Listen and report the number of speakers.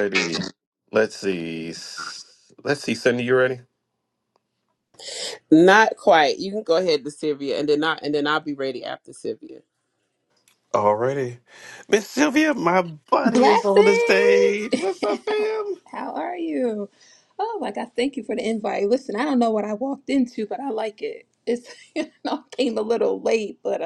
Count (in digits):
3